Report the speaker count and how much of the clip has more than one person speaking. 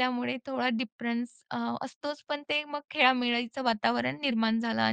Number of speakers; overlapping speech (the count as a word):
one, no overlap